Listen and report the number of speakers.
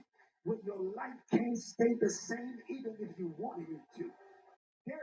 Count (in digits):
1